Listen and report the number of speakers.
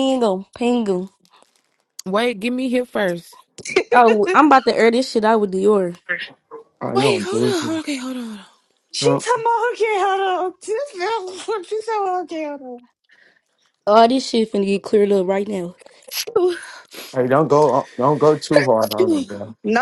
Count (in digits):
4